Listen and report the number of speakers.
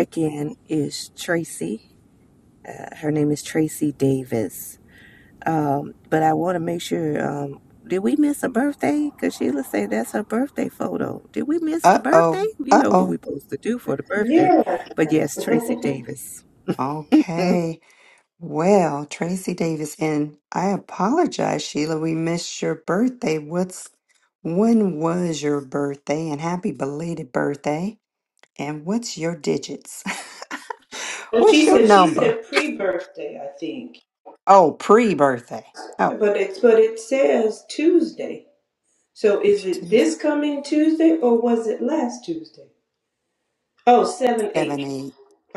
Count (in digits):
3